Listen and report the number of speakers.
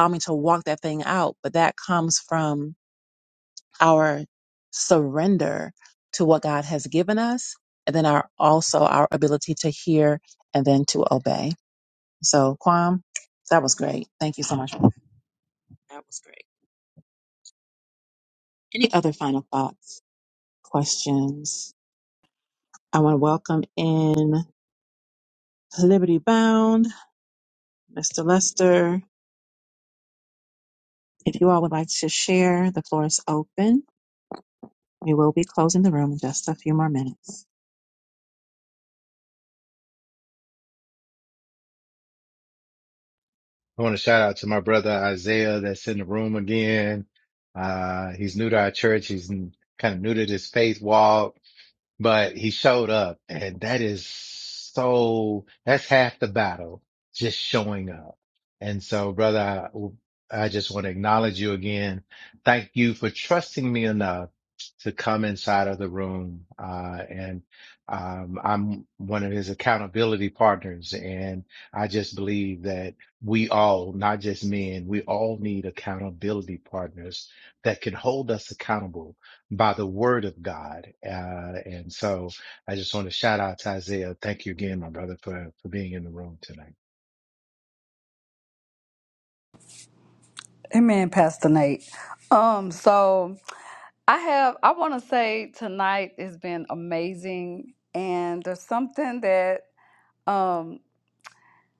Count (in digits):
3